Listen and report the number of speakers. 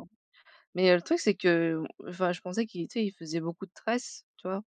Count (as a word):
one